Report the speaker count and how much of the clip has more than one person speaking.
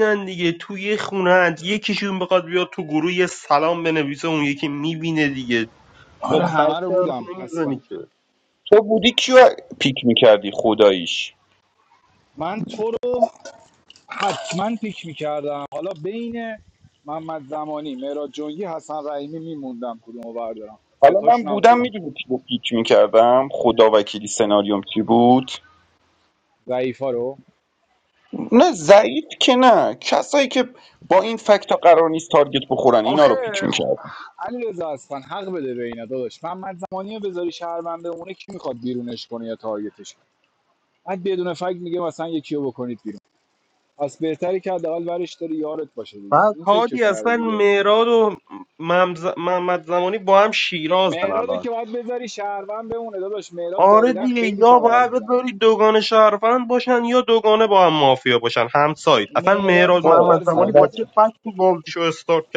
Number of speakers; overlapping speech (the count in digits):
3, about 13%